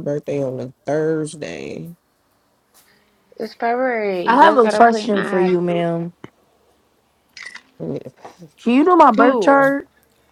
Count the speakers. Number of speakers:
three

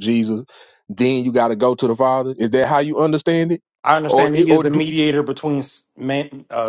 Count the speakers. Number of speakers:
two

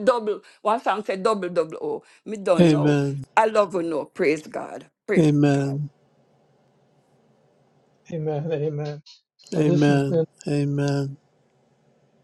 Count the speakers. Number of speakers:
three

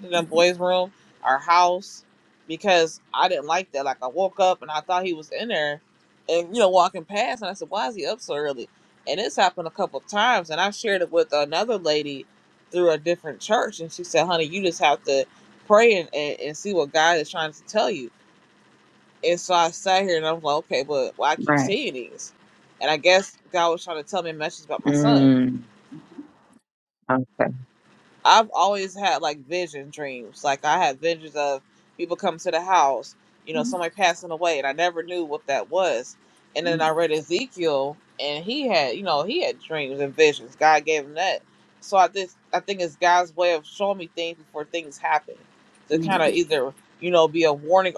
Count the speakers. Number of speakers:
two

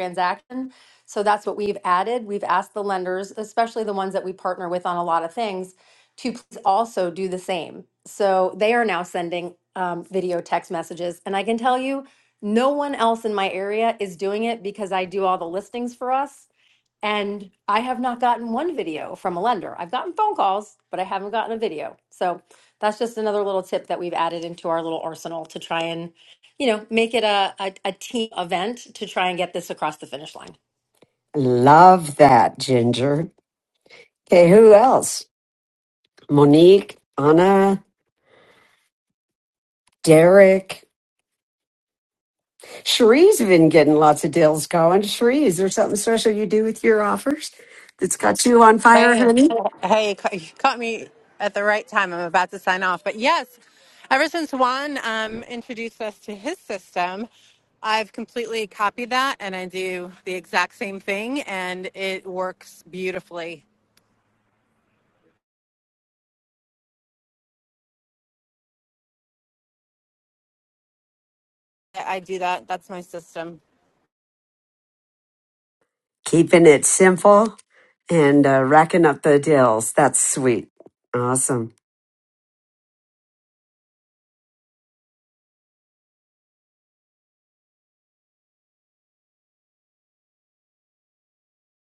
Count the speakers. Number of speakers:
three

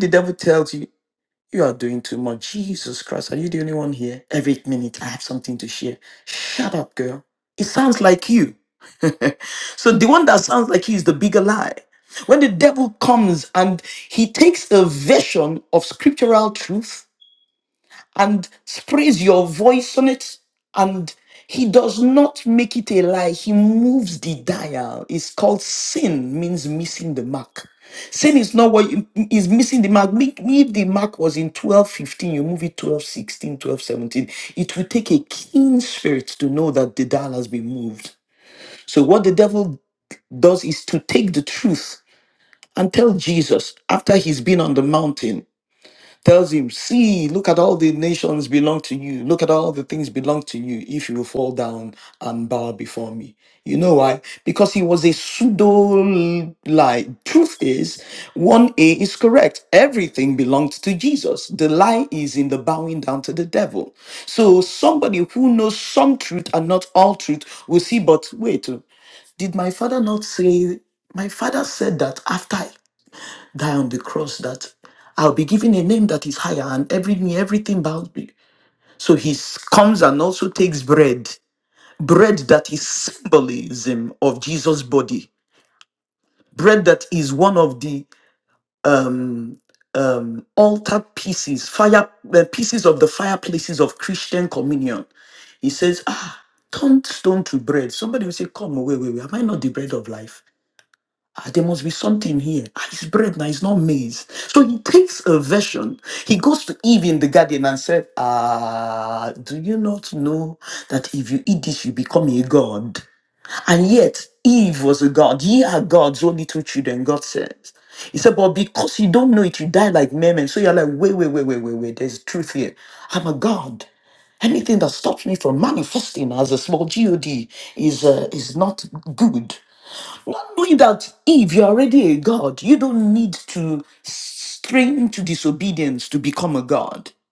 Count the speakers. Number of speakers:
one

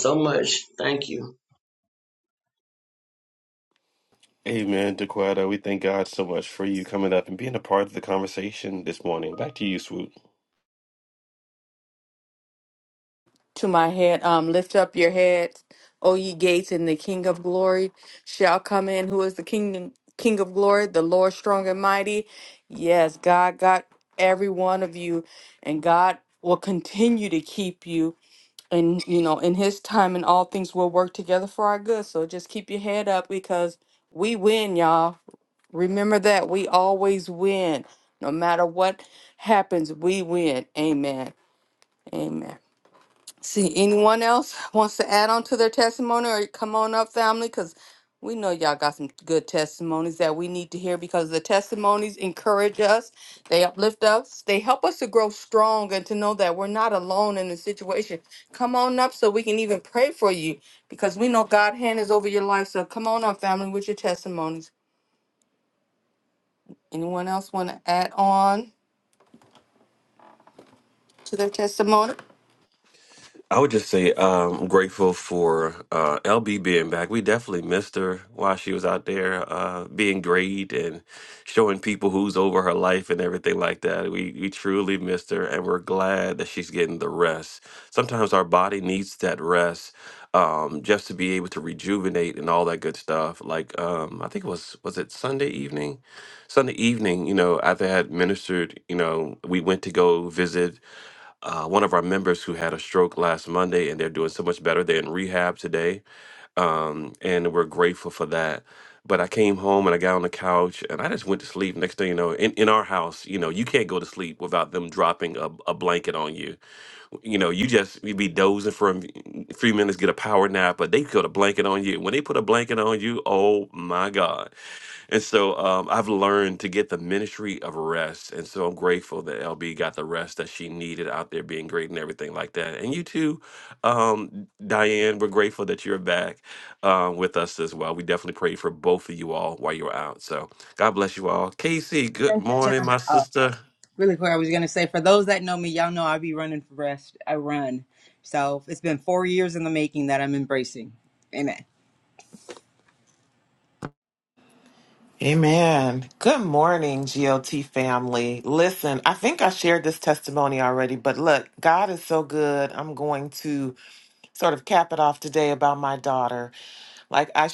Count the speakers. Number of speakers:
five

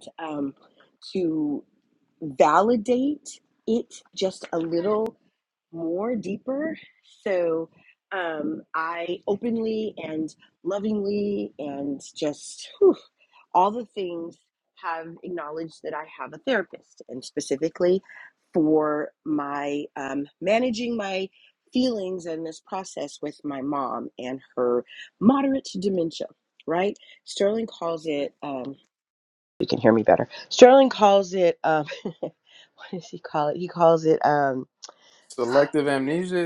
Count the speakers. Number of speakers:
two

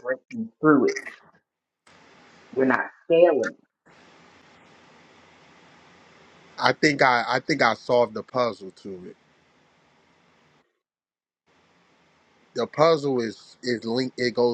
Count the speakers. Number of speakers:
two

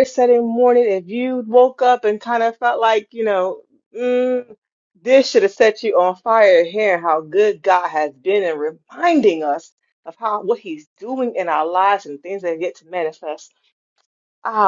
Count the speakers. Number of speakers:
one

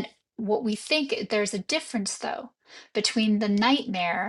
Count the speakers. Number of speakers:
one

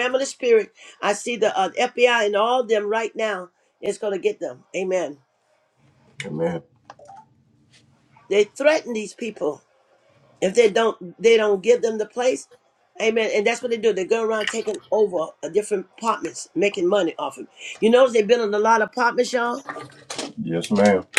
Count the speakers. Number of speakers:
two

